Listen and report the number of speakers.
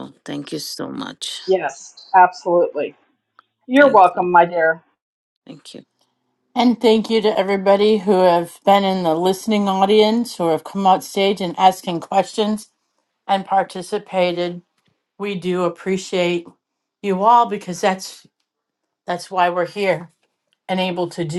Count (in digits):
3